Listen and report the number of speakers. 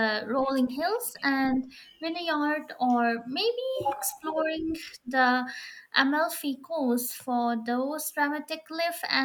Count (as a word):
one